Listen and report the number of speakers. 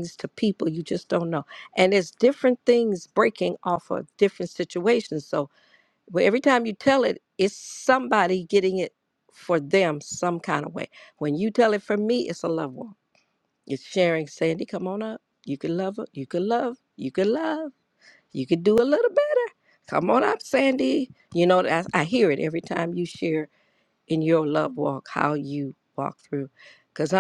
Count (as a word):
one